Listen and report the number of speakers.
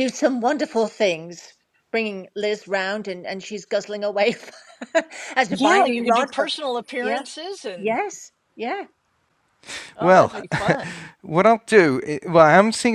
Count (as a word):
three